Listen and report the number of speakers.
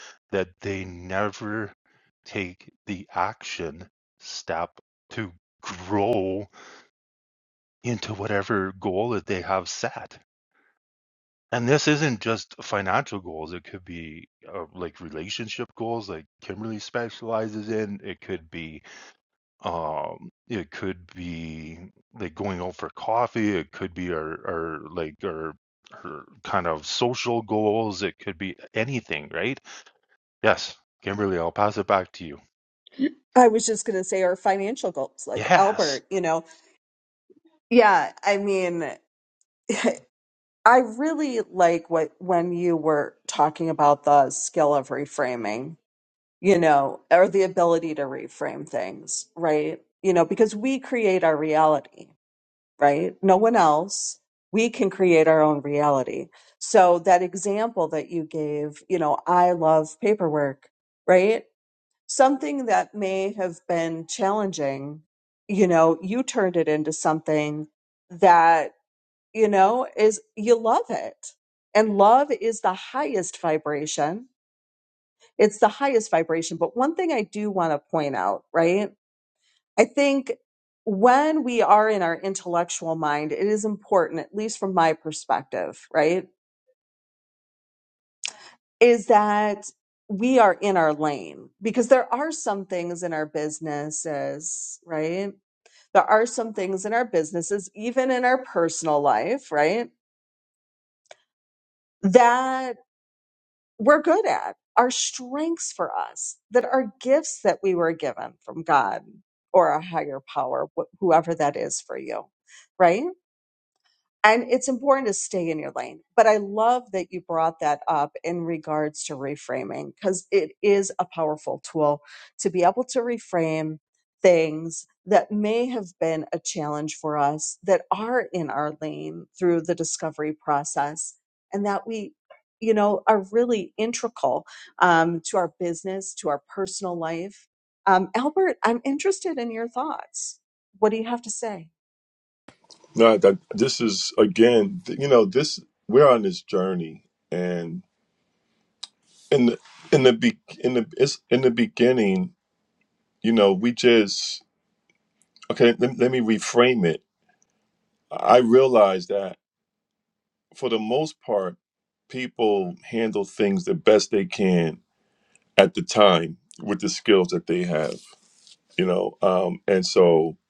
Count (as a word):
three